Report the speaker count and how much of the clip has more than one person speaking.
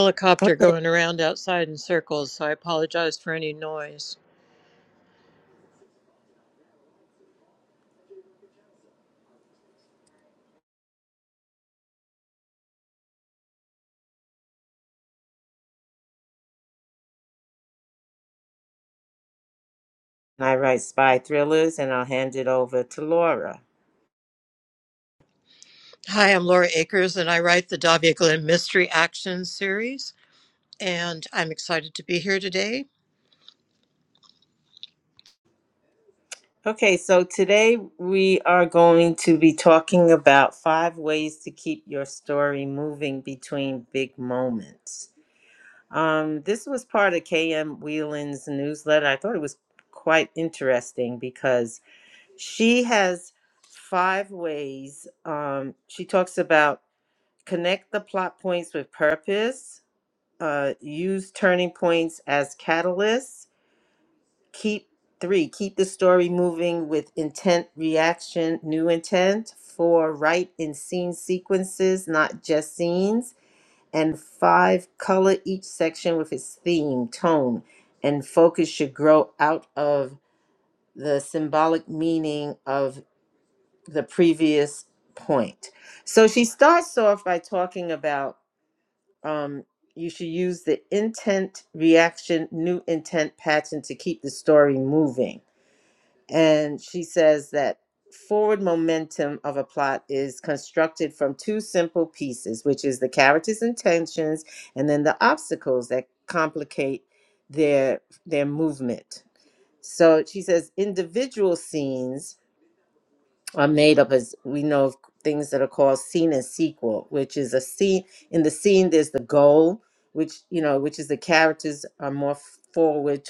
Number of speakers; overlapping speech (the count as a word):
two, under 1%